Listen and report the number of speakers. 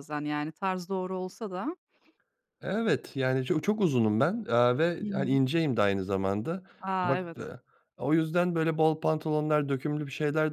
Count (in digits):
2